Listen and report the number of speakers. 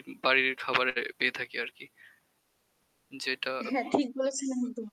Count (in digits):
2